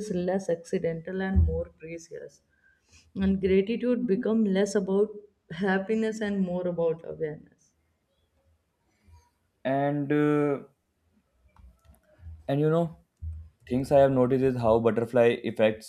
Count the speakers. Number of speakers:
two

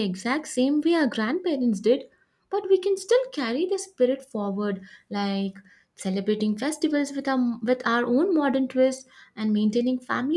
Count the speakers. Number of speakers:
one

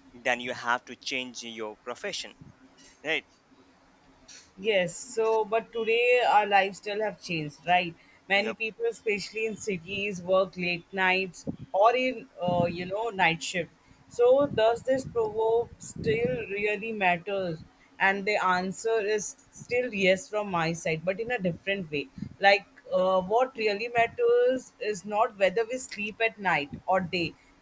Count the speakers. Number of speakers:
two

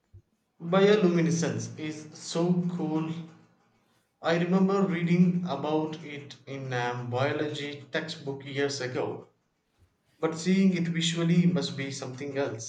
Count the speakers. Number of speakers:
one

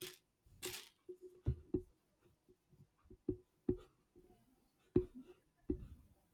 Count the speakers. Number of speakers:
zero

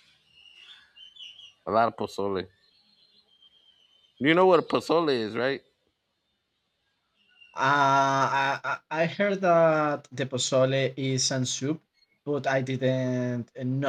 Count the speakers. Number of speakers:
two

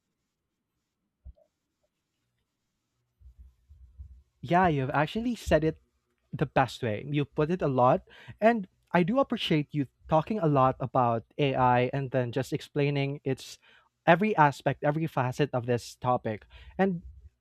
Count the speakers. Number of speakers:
one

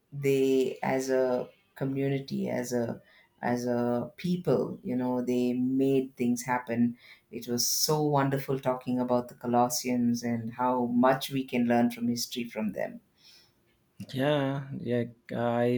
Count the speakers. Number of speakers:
two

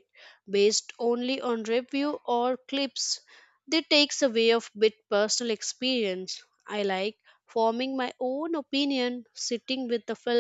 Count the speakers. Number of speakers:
one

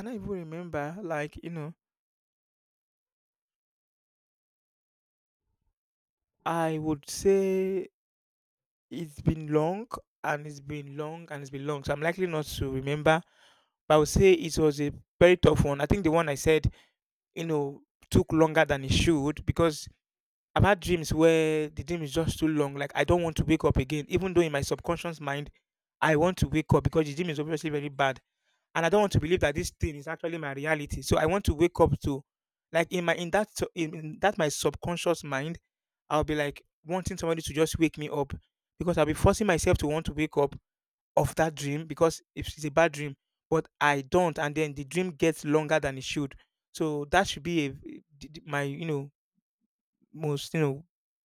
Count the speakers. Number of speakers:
one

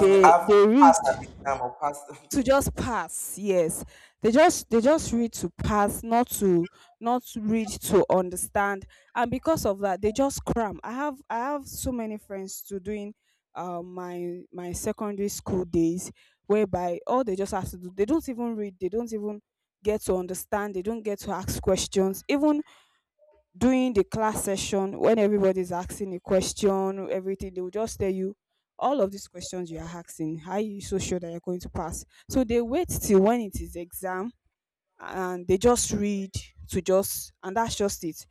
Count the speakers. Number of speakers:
two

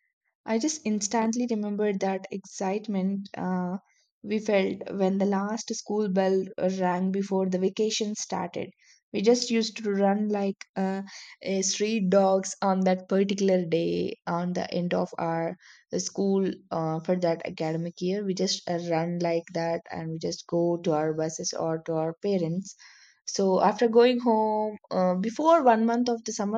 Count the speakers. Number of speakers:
one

